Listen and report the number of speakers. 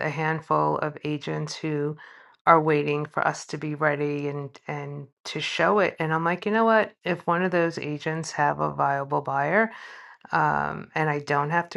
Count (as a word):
one